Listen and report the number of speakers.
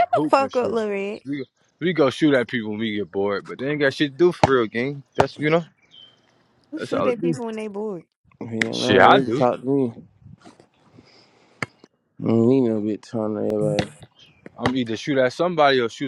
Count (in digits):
3